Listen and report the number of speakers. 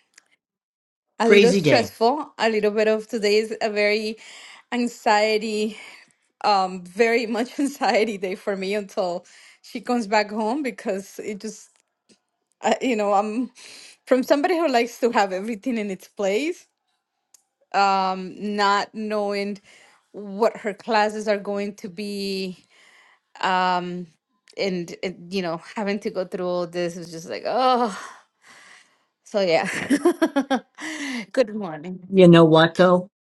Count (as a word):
two